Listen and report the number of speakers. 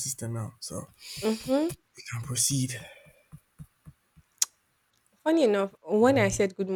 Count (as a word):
two